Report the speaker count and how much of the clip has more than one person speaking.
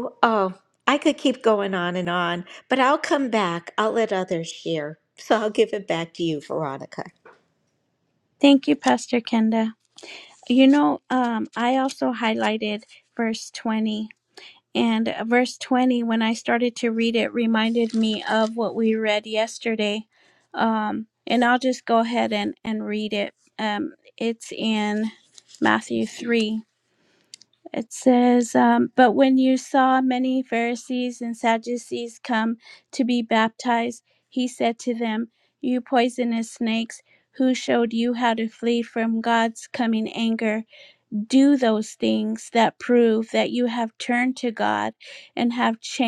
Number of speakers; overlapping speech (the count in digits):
2, no overlap